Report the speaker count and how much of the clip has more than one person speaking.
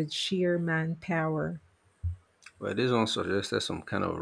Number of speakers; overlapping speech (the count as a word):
two, no overlap